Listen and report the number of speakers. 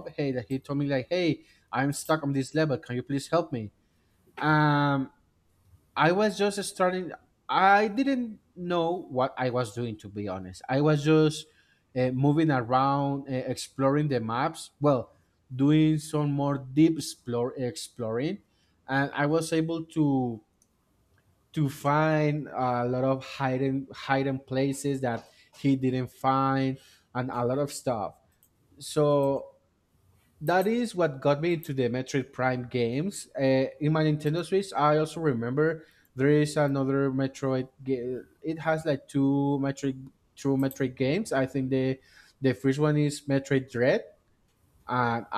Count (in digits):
1